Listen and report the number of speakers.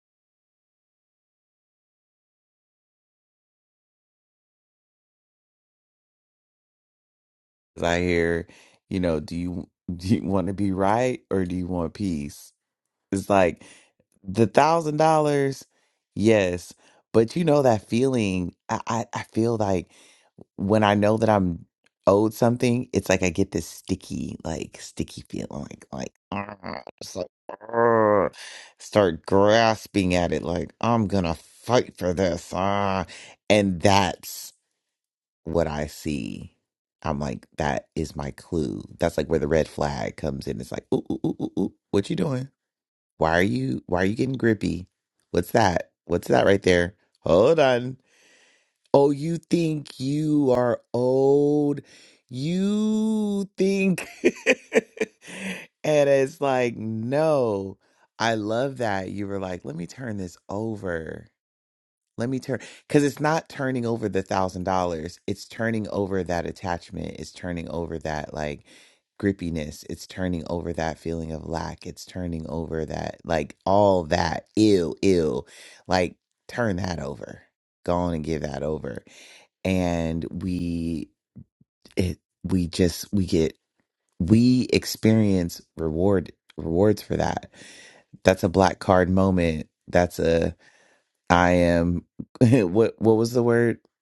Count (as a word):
one